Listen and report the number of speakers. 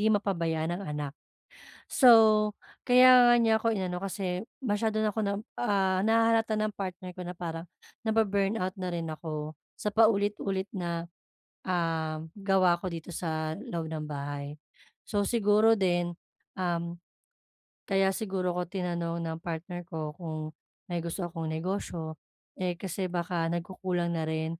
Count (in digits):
1